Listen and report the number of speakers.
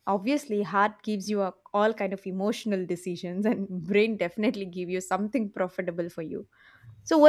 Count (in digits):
1